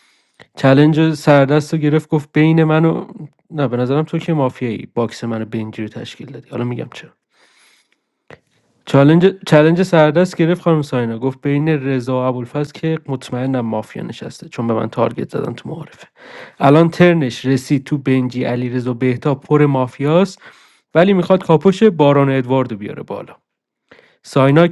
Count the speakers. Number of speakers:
1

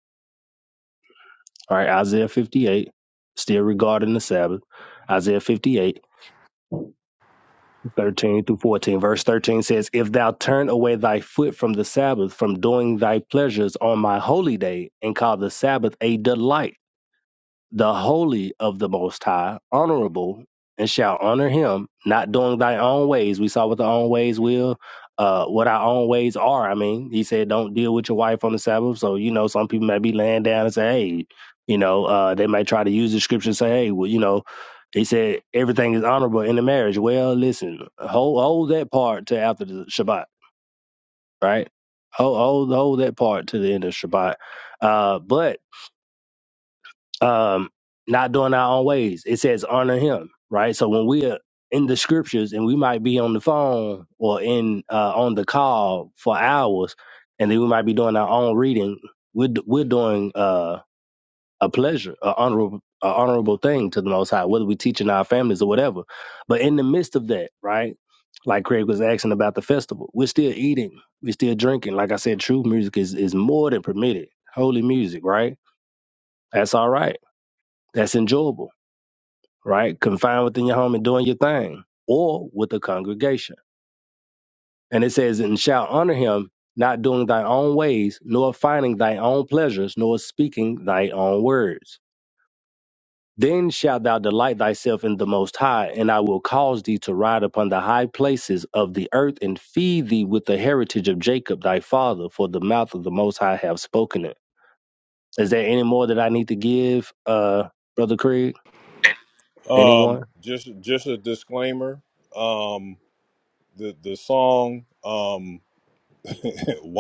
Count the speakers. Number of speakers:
2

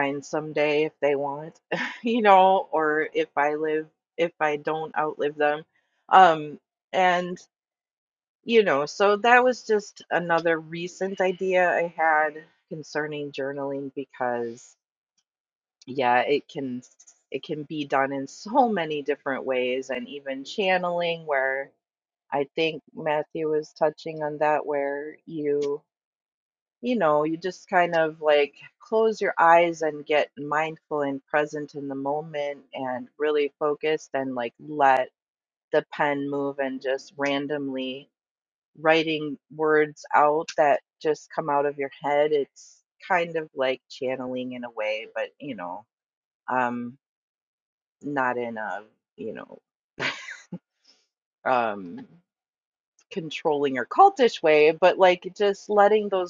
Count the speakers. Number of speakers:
1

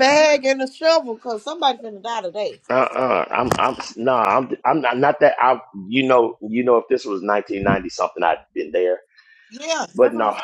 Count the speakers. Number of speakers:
2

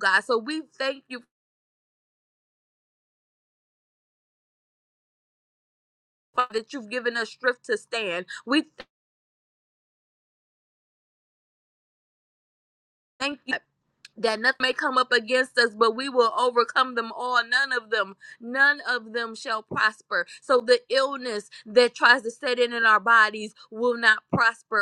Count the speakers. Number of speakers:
1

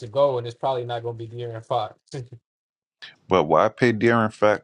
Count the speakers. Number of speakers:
2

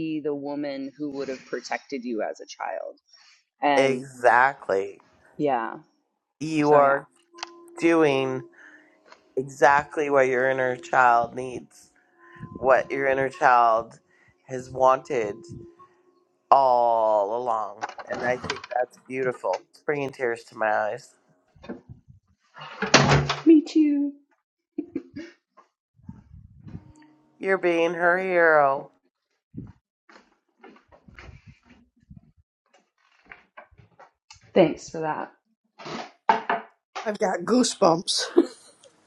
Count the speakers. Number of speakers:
3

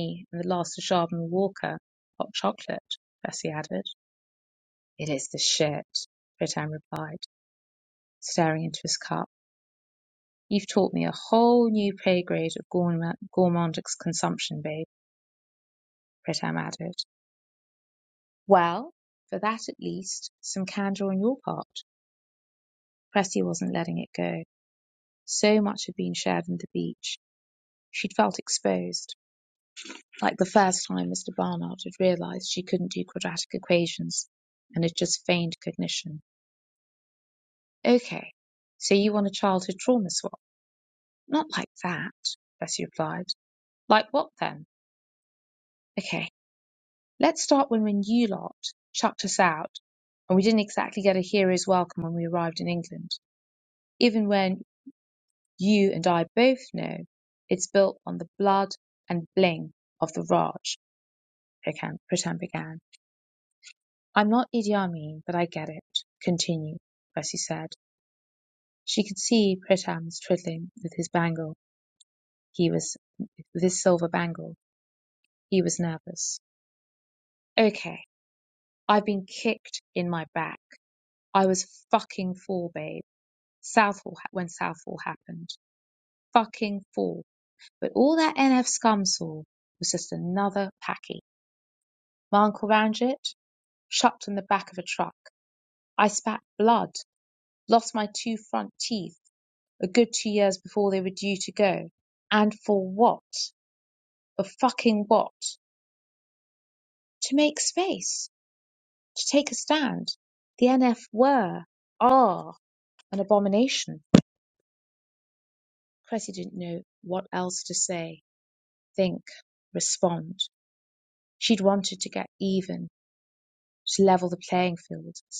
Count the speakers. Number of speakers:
1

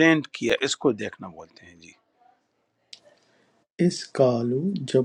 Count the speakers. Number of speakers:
2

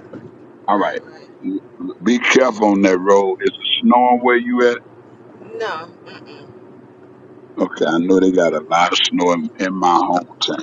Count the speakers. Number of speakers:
2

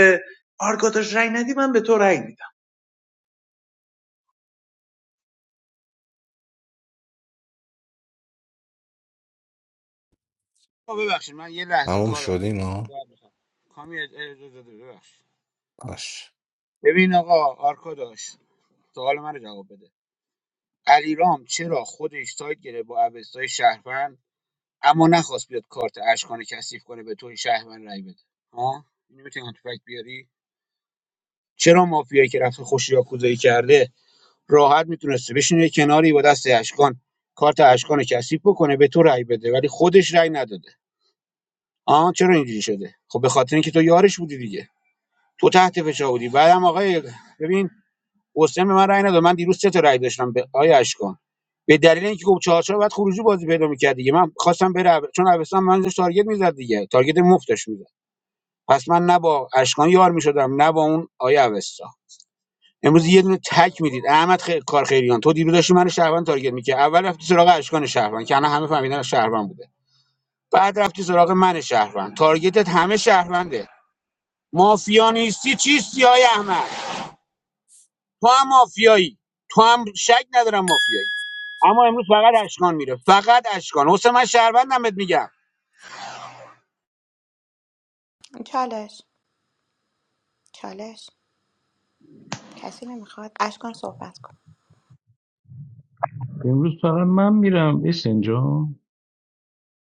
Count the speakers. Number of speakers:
5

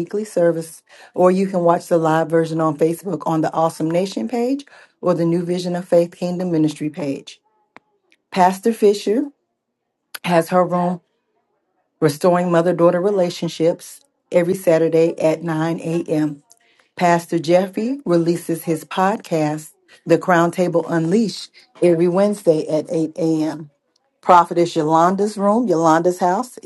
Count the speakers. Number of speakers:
1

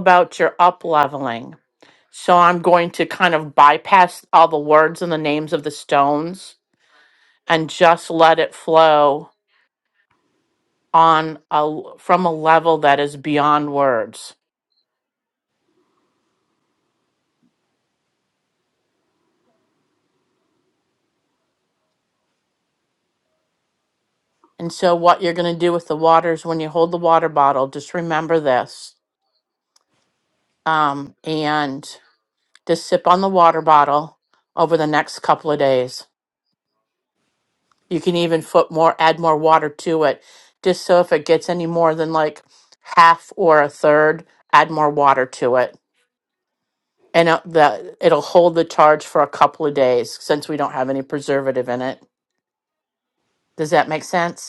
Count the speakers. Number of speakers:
1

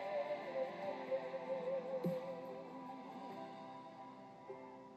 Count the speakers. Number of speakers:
0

